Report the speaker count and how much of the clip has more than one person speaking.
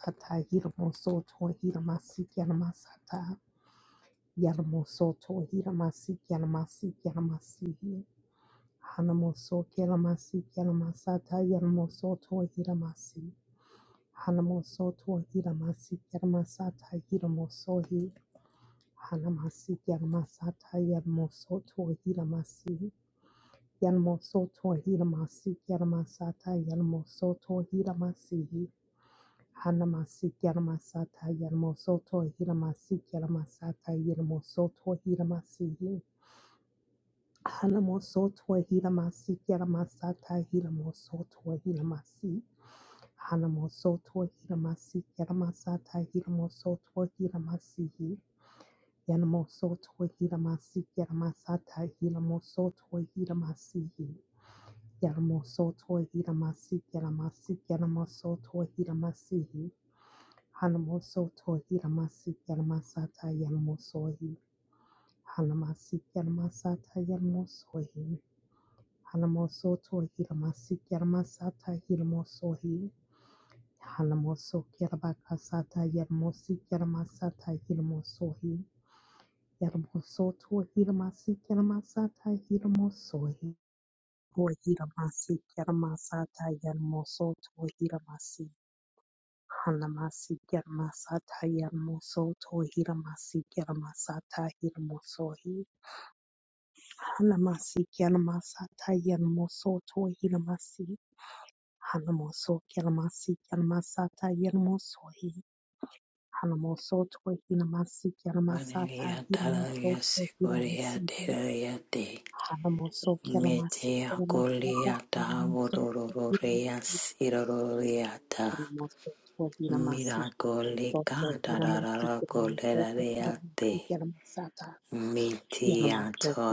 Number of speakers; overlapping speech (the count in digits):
2, about 8%